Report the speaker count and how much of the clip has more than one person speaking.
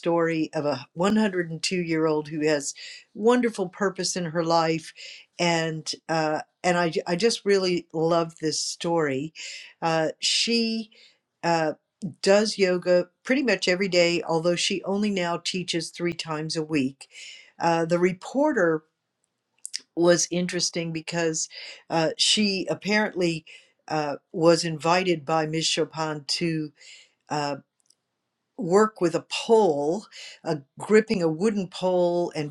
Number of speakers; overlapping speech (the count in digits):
1, no overlap